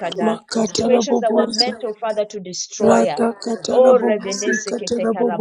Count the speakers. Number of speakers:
2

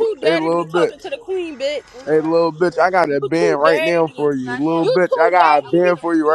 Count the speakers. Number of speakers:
2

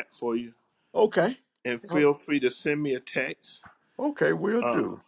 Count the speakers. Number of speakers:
2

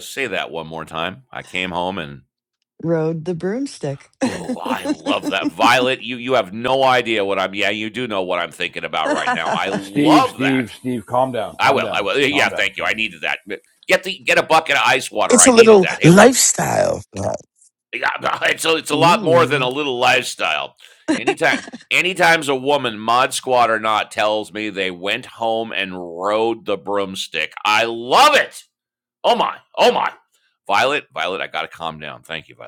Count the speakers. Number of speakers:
4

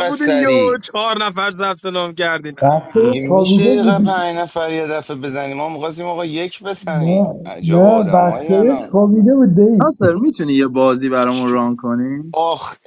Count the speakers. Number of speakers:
4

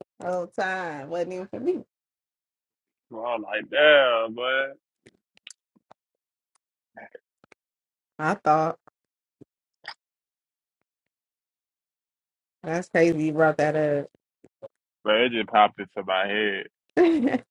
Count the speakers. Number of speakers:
2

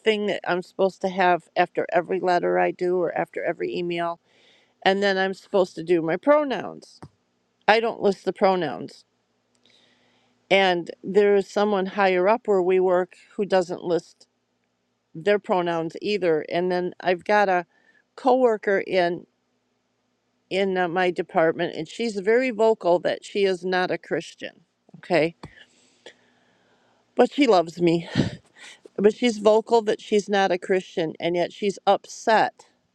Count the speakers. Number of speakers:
1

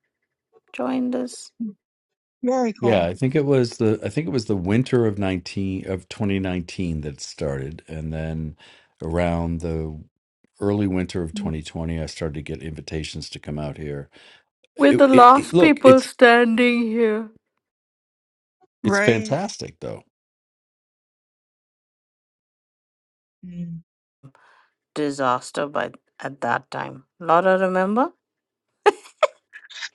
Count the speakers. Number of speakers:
3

